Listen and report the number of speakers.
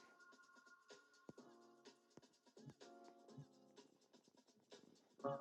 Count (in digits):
0